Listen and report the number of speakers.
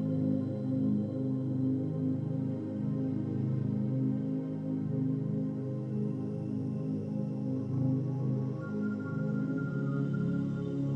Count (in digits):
0